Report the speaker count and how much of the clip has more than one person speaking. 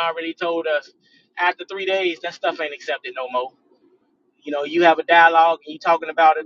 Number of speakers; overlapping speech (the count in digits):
1, no overlap